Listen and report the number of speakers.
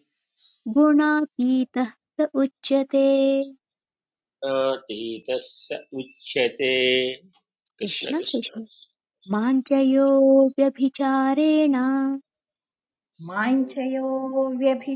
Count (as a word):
three